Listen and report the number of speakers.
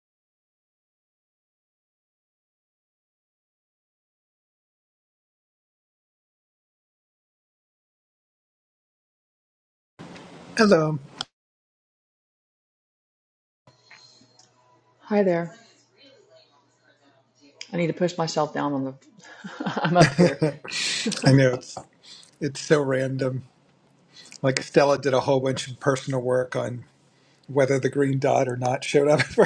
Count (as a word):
two